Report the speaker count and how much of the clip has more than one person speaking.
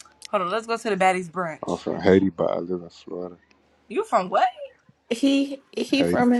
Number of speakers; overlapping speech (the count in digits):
3, about 4%